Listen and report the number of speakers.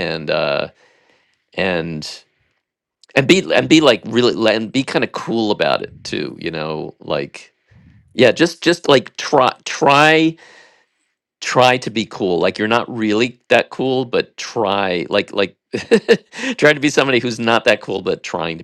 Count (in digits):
1